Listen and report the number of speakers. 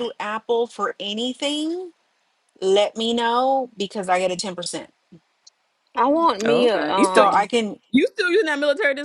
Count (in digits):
3